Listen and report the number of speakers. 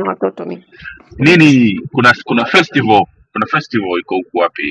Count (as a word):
two